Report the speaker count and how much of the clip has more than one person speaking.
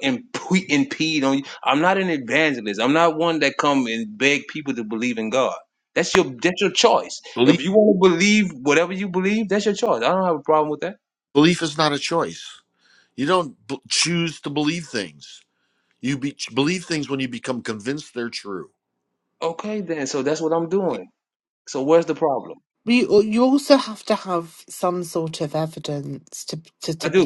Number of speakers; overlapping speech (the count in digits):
3, about 1%